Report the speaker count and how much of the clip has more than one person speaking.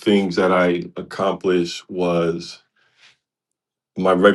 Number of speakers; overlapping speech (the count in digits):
1, no overlap